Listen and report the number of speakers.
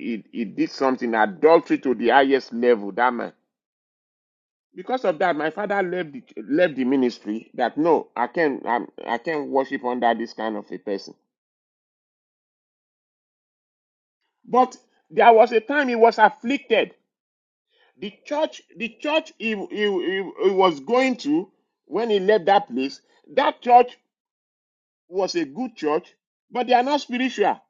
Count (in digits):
1